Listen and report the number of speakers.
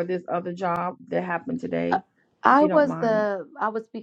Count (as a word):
two